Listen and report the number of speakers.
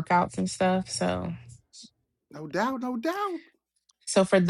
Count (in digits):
2